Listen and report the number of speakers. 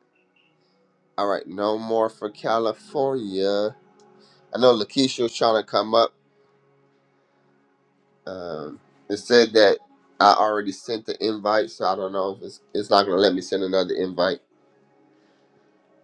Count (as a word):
one